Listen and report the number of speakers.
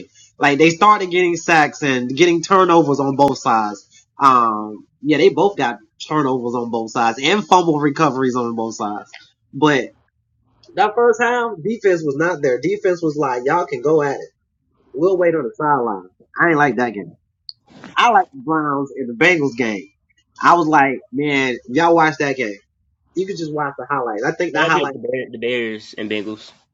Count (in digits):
2